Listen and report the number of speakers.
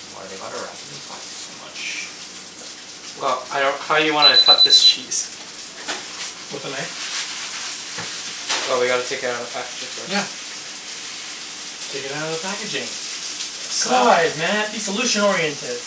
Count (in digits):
3